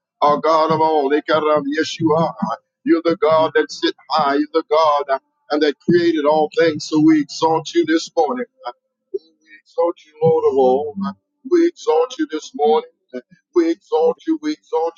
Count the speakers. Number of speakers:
1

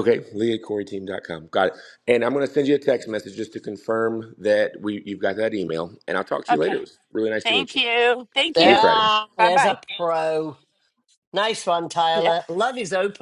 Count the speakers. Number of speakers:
3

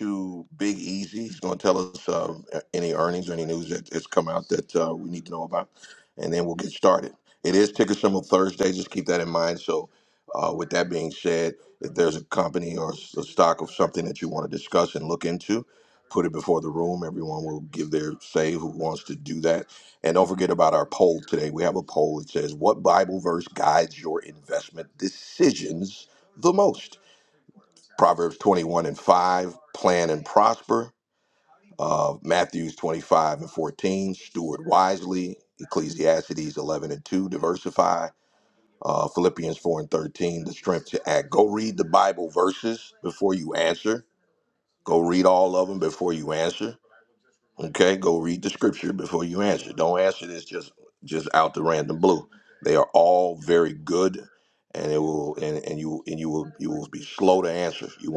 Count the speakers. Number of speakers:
1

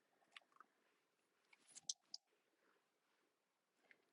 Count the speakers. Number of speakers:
0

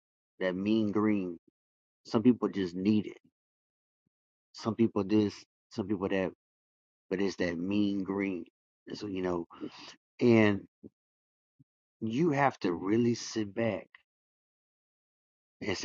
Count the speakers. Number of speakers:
1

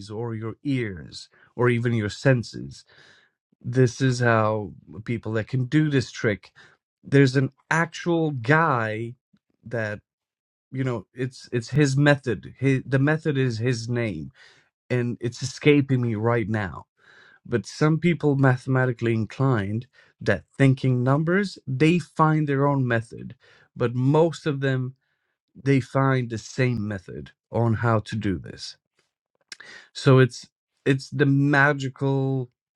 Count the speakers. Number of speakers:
1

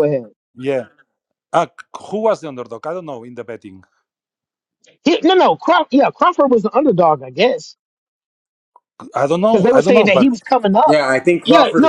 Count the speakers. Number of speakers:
3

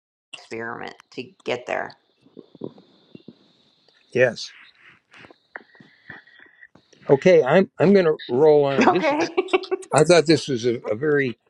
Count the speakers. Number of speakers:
2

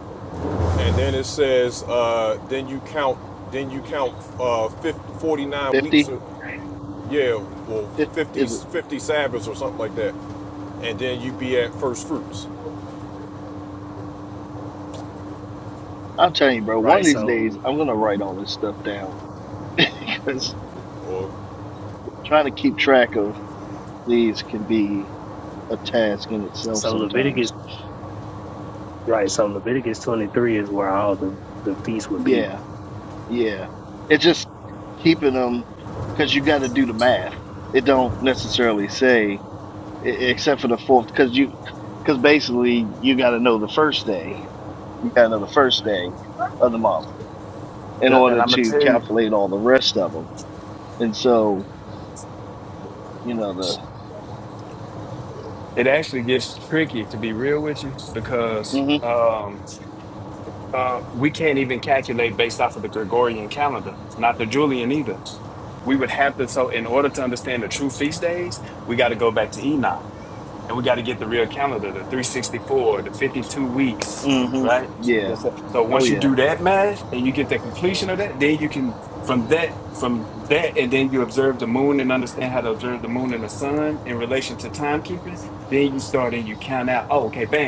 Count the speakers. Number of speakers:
4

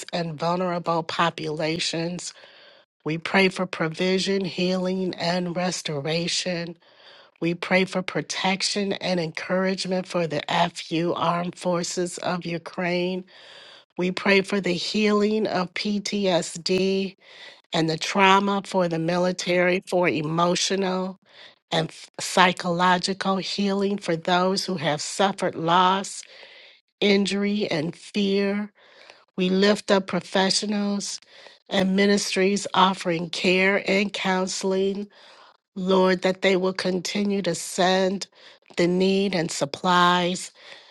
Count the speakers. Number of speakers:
1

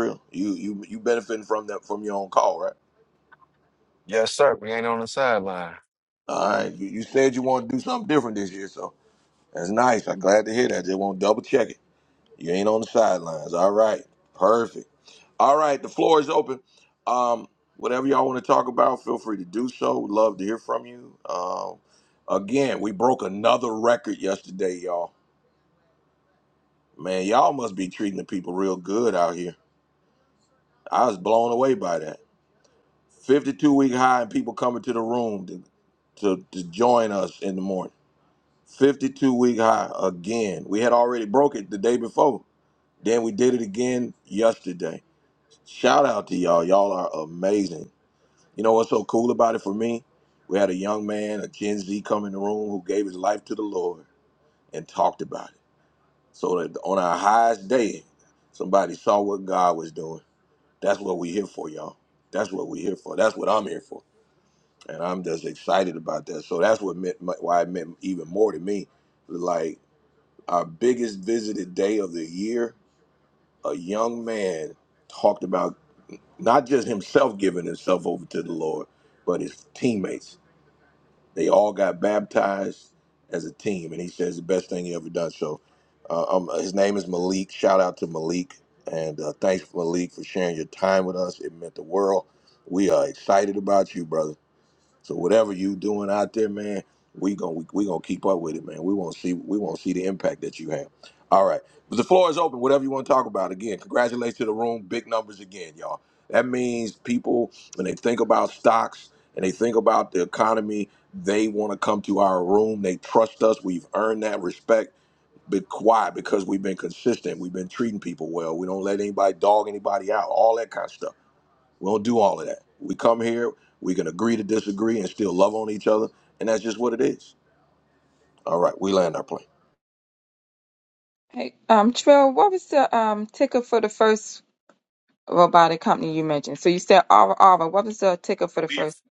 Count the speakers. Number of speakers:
3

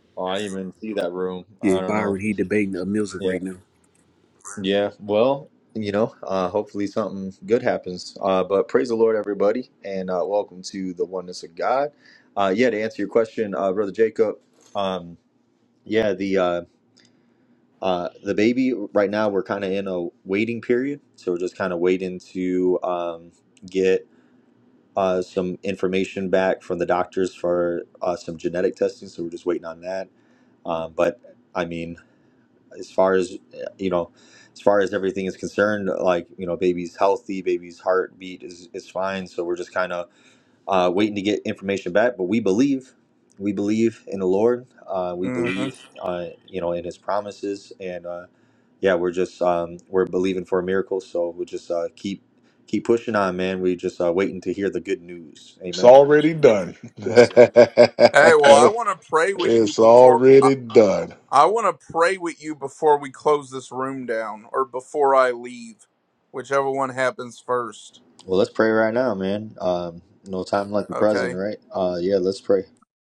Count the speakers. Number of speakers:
4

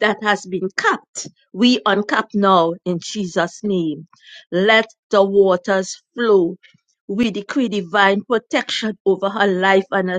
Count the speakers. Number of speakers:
1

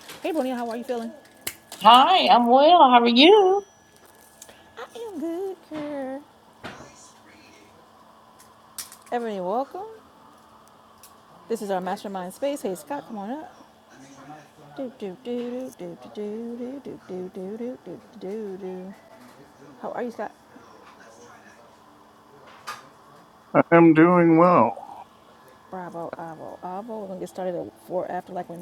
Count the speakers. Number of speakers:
3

